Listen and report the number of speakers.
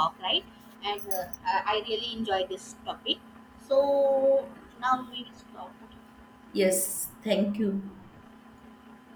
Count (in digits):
2